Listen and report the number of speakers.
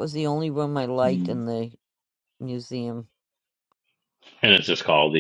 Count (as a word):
two